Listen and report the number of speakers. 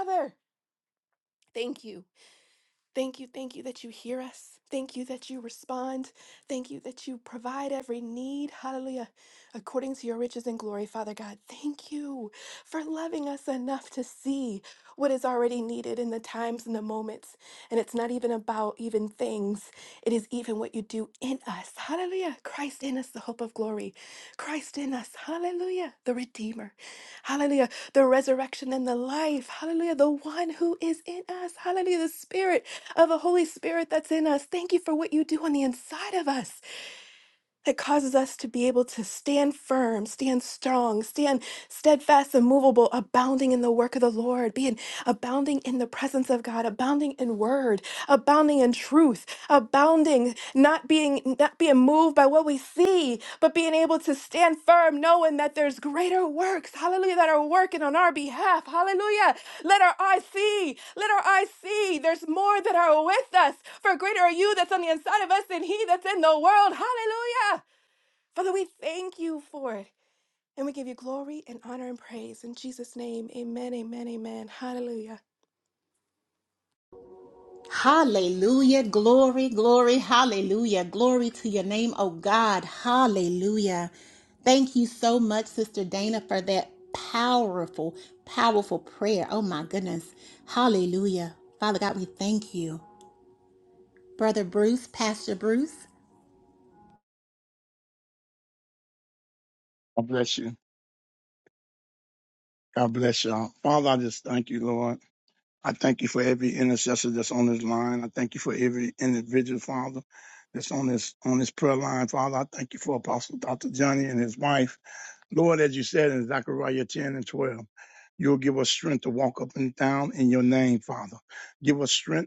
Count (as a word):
three